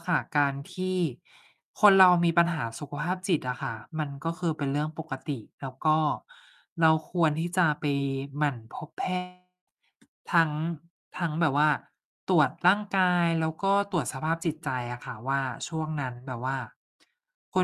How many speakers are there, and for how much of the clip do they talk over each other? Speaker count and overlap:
1, no overlap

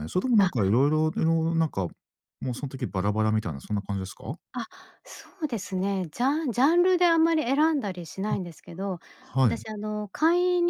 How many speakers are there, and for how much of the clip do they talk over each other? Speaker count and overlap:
2, about 3%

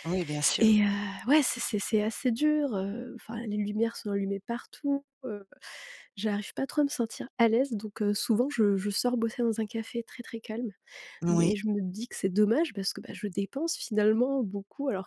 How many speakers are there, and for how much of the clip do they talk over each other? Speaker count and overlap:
2, about 3%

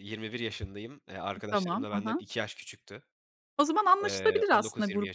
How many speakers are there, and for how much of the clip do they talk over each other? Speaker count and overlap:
2, about 39%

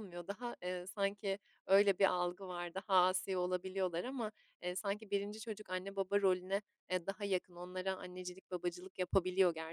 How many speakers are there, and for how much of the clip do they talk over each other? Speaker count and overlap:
1, no overlap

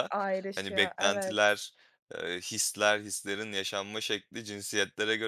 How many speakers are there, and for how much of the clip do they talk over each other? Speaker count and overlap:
2, about 17%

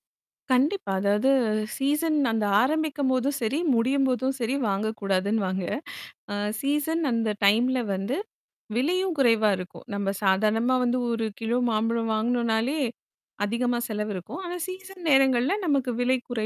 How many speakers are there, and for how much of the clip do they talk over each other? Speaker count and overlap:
1, no overlap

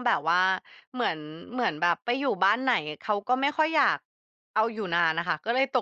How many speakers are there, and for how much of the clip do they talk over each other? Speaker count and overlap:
1, no overlap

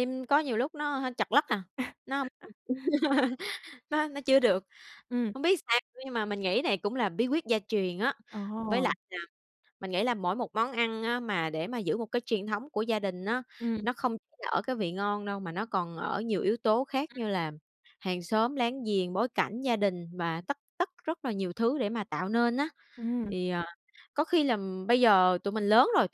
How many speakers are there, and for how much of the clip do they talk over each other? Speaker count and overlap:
2, about 1%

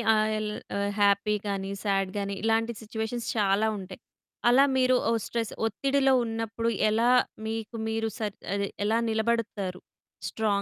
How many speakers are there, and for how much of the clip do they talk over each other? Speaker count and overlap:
1, no overlap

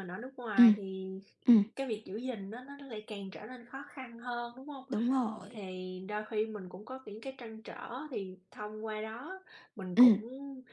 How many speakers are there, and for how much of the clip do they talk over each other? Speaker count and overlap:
2, about 5%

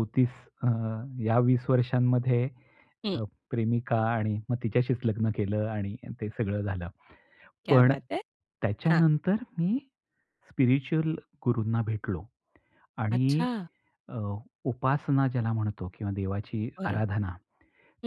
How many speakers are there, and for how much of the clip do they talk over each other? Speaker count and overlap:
2, about 6%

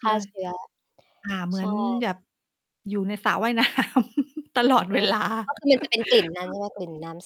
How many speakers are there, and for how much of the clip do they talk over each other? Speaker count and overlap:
2, about 9%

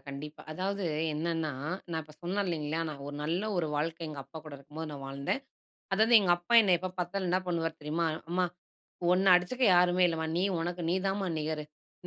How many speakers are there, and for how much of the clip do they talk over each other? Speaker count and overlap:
1, no overlap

